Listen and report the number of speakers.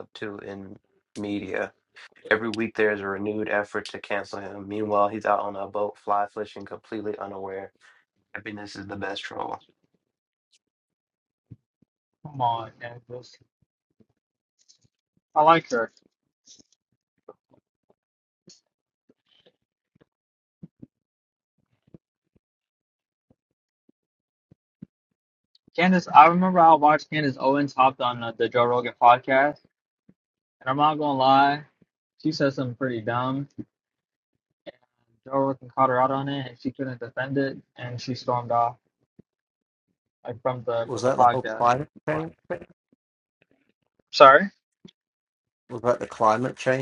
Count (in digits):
3